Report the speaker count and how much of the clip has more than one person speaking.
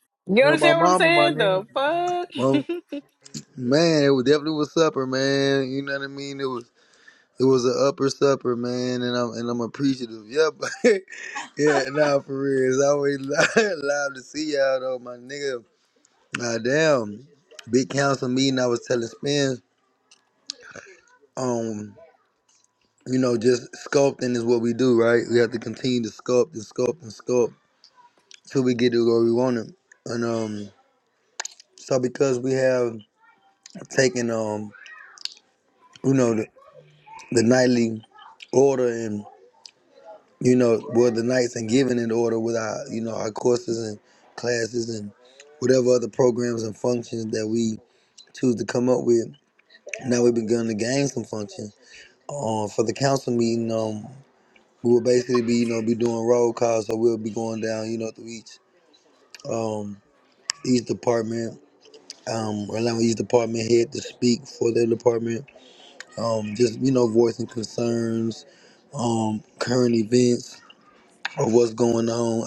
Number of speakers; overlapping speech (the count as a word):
two, about 2%